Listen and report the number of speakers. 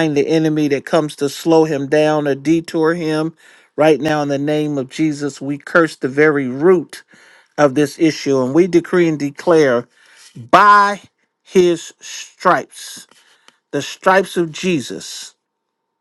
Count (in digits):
1